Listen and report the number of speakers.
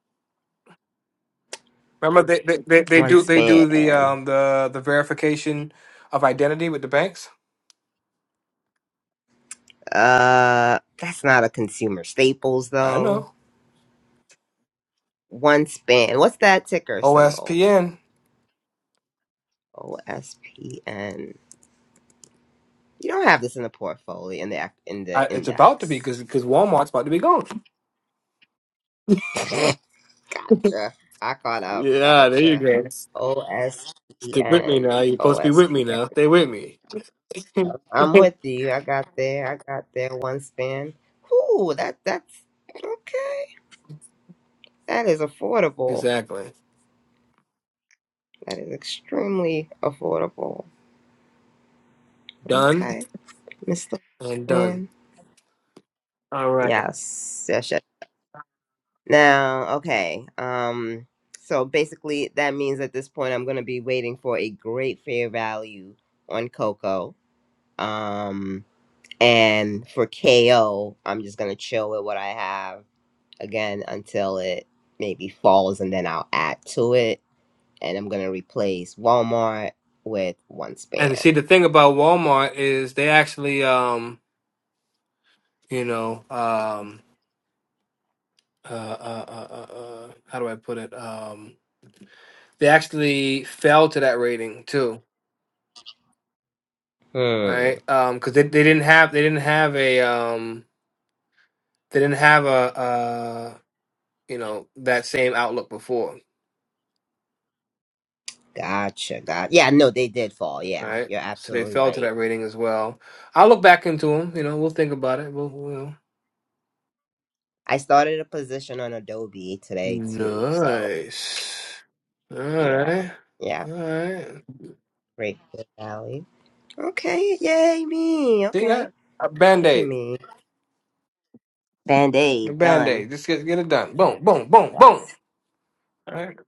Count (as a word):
two